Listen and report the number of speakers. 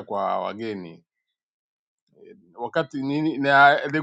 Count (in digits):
1